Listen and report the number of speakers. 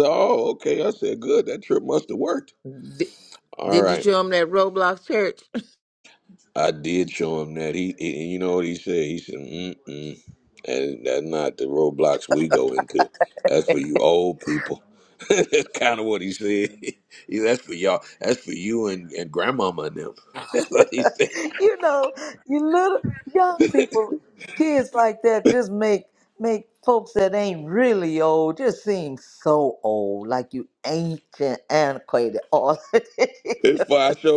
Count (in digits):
3